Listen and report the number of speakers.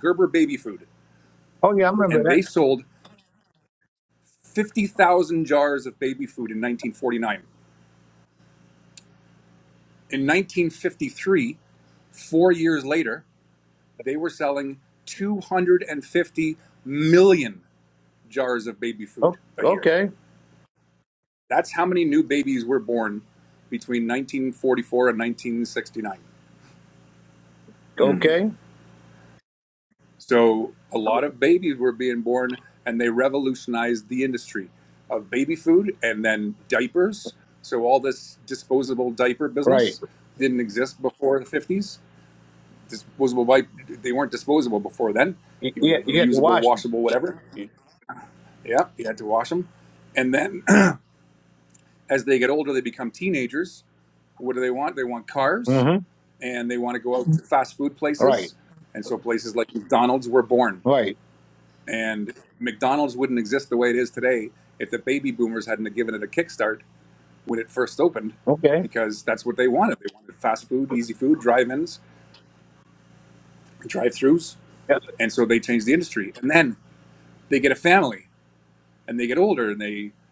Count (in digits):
2